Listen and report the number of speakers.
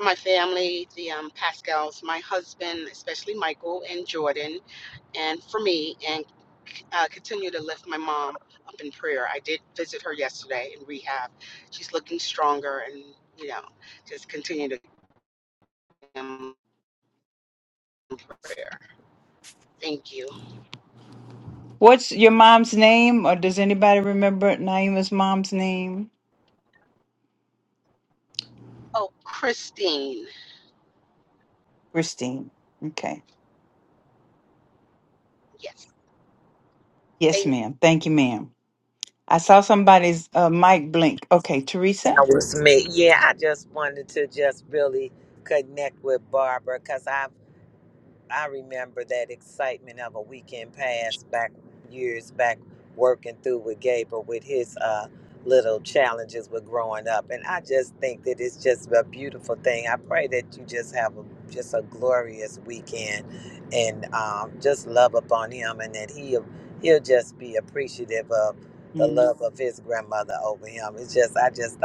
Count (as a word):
three